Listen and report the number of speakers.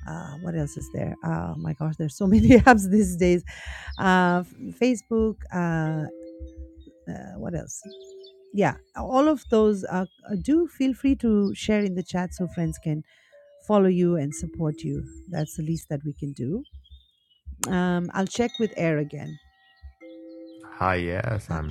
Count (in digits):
2